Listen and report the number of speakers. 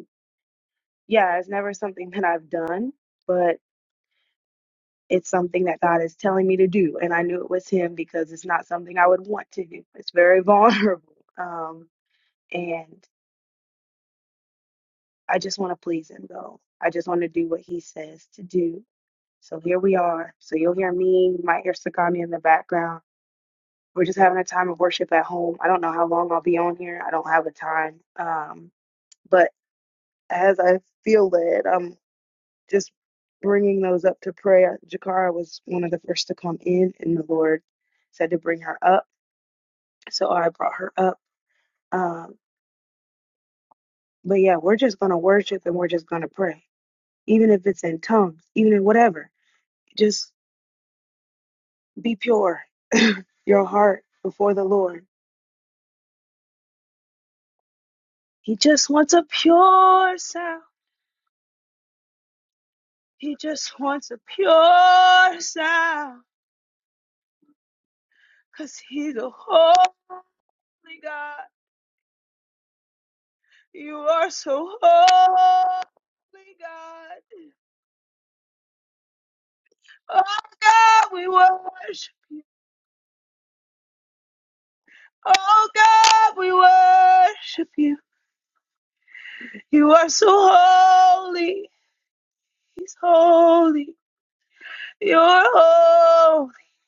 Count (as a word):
one